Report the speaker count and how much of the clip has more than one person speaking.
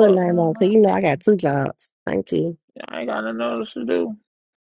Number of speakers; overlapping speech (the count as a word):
two, about 17%